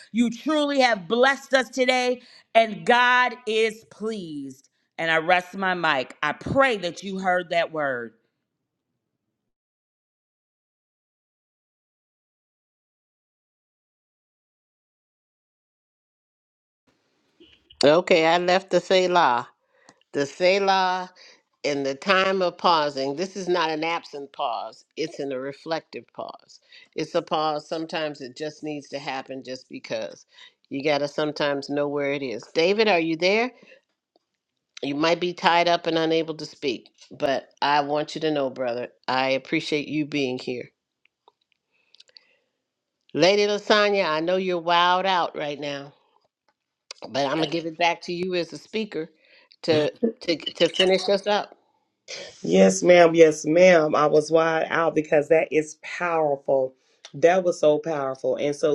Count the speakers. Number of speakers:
3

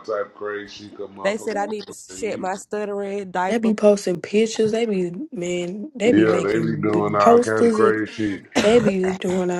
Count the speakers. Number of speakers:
3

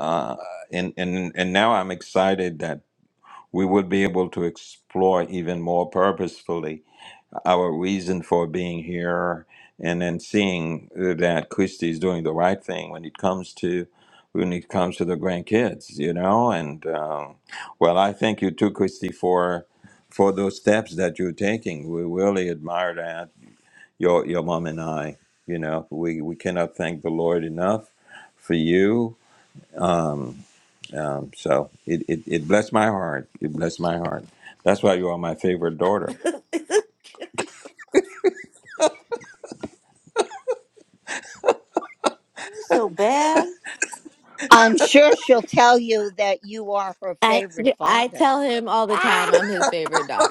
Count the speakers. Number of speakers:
4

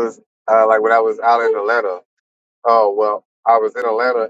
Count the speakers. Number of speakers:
1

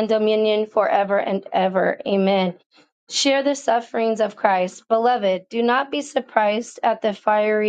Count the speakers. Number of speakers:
1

